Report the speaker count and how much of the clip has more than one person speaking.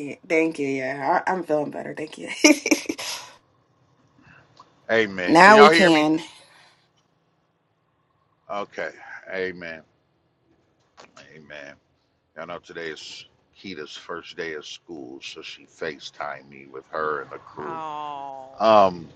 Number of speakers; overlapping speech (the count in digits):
3, about 6%